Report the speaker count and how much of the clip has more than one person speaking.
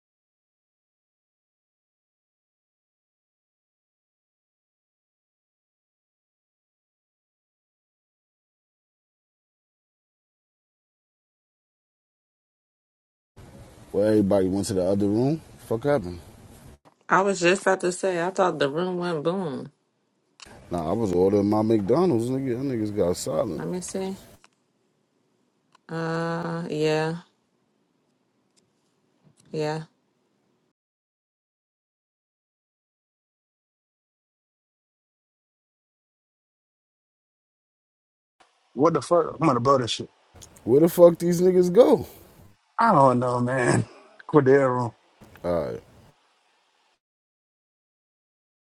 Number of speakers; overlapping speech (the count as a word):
three, under 1%